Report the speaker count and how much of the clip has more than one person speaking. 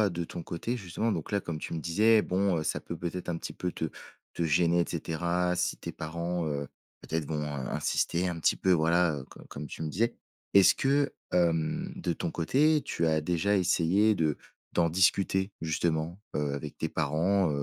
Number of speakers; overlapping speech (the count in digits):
1, no overlap